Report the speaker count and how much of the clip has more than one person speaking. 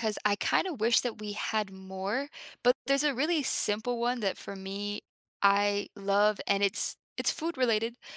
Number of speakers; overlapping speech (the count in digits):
1, no overlap